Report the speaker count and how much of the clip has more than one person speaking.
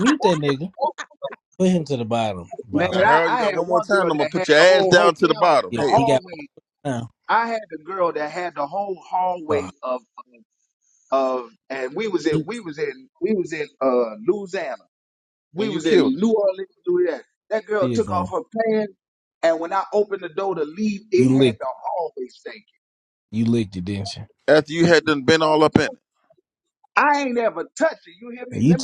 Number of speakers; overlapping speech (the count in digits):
3, about 20%